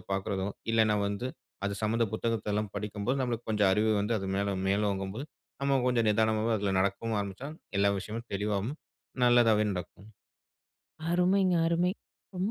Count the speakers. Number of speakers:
2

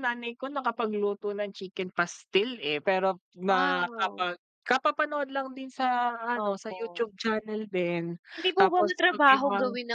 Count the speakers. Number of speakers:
2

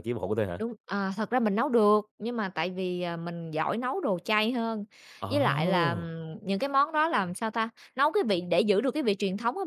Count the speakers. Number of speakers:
2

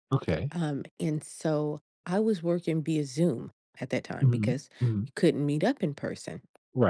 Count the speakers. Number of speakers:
2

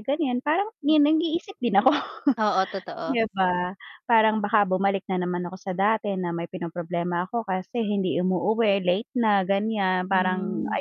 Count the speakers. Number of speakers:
2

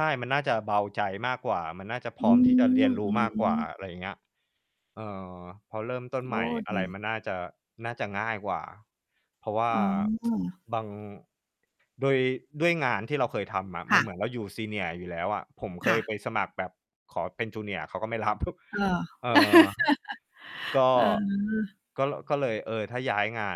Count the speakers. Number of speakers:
2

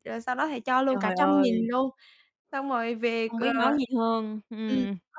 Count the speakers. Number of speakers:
2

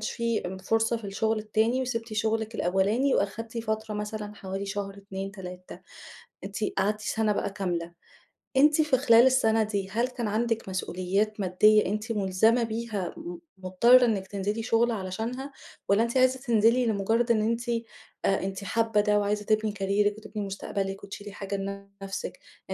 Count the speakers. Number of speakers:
1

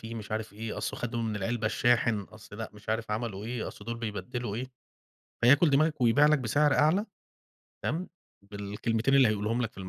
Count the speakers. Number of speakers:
1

